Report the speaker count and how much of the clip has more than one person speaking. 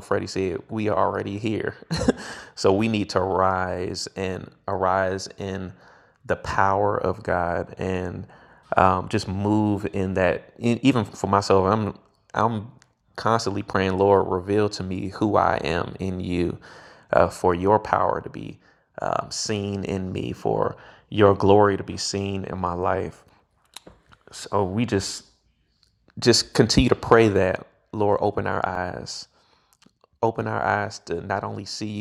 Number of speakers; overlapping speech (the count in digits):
1, no overlap